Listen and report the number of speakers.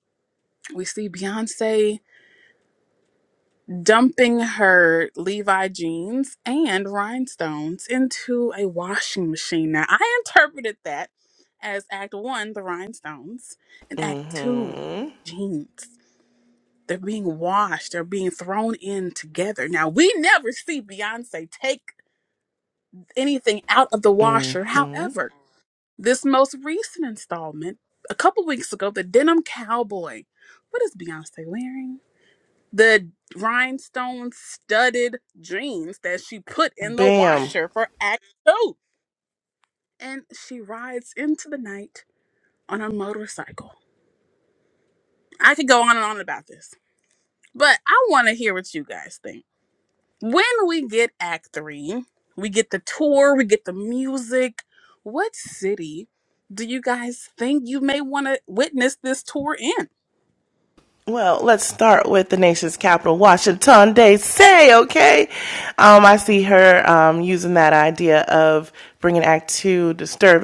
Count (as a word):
two